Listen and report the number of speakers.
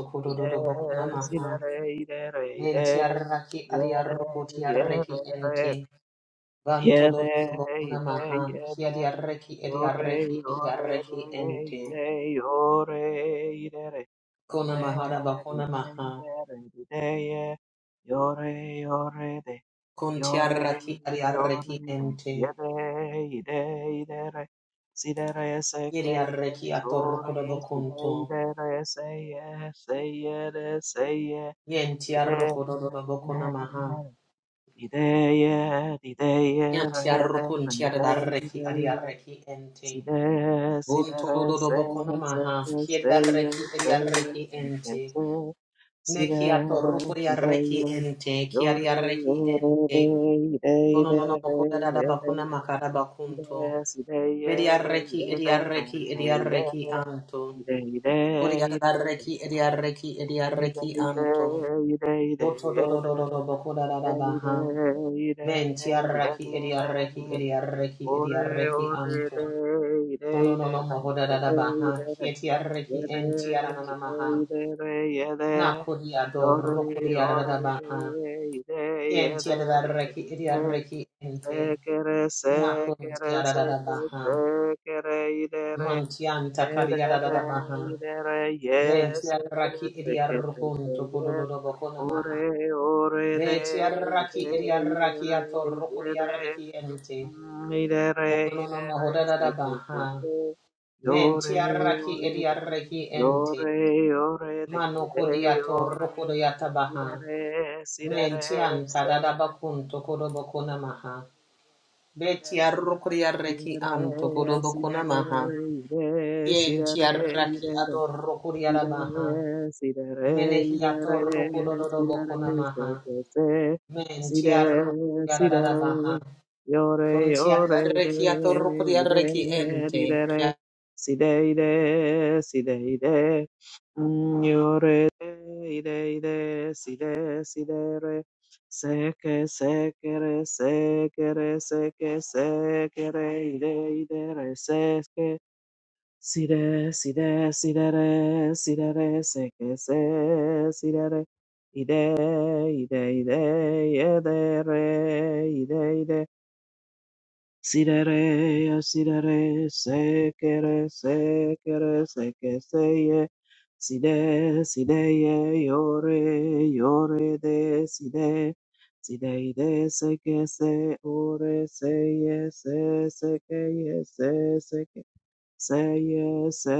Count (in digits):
2